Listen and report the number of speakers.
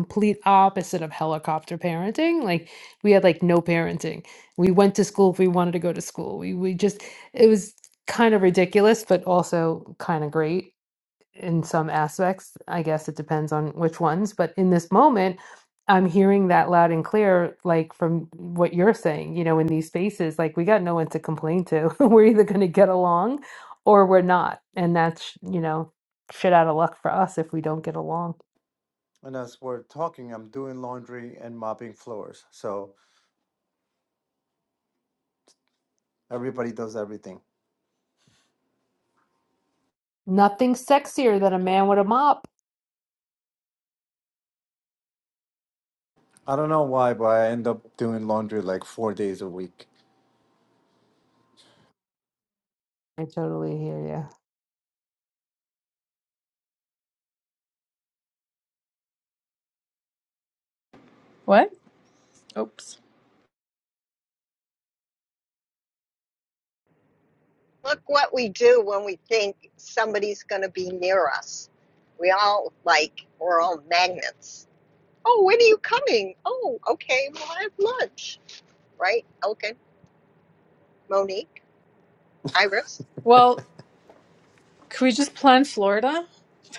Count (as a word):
four